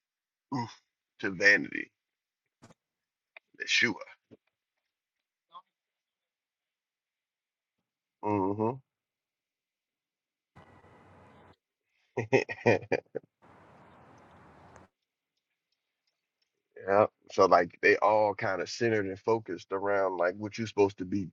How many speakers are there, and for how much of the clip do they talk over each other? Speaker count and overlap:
one, no overlap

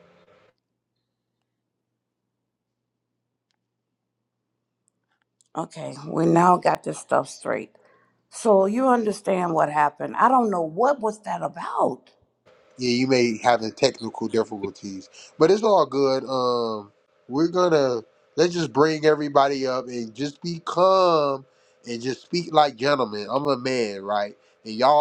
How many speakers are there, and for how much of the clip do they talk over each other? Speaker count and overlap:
two, no overlap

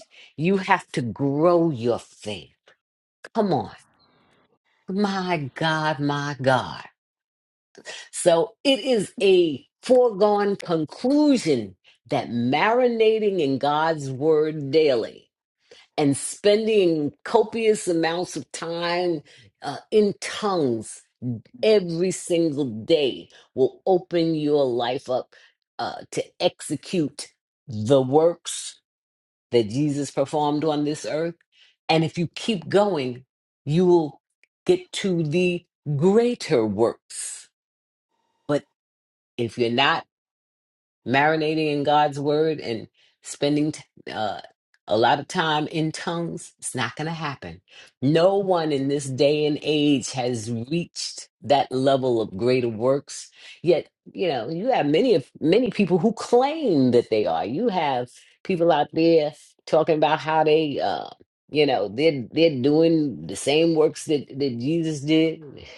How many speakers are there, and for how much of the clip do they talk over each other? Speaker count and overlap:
one, no overlap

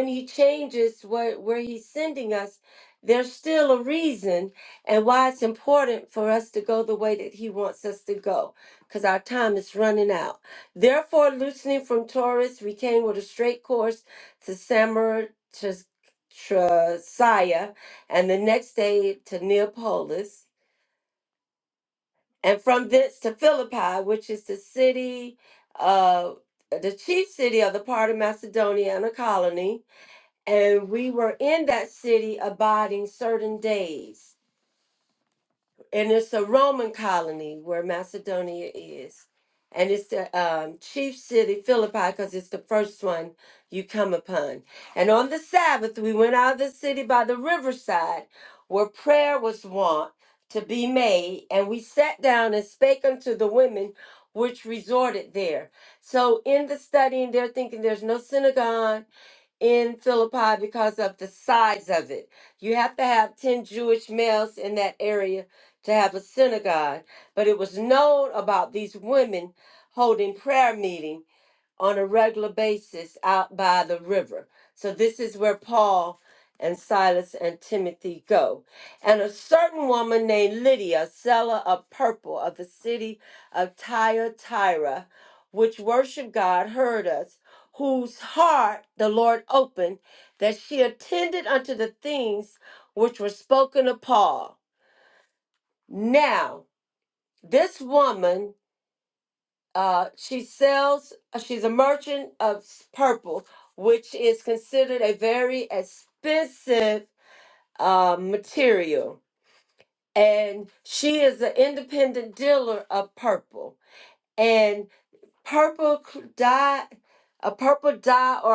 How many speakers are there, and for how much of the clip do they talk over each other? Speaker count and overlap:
one, no overlap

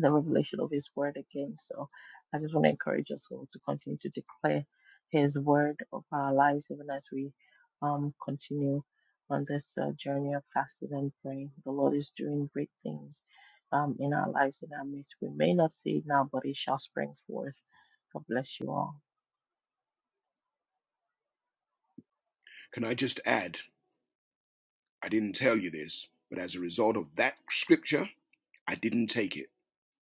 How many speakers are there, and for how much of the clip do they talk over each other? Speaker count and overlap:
two, no overlap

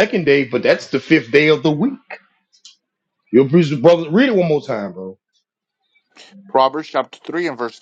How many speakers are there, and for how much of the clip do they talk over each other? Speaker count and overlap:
two, no overlap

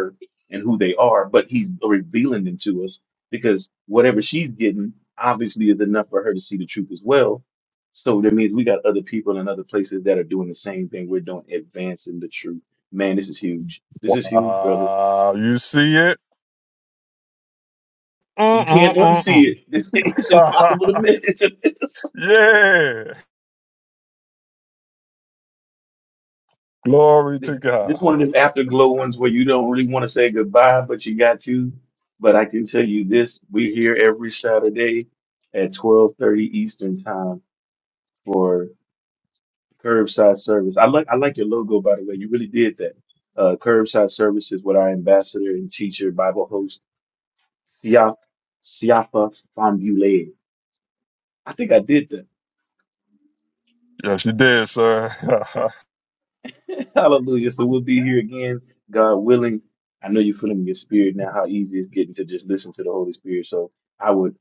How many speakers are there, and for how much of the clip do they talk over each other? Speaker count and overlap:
two, about 3%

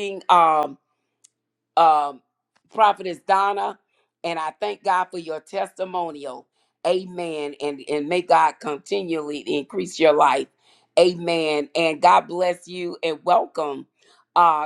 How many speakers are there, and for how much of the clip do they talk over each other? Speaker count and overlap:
one, no overlap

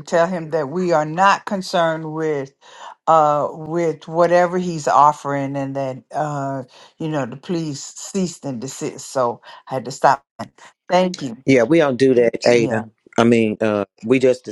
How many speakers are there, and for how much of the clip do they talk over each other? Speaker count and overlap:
two, about 2%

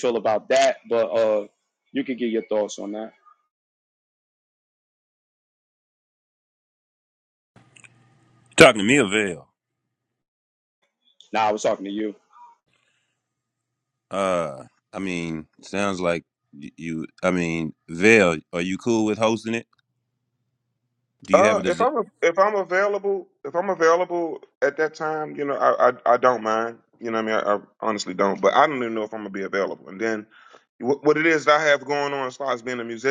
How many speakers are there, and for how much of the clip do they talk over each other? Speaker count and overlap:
three, about 2%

